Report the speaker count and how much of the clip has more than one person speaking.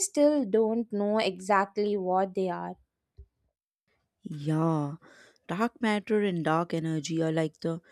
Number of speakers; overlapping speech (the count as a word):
two, no overlap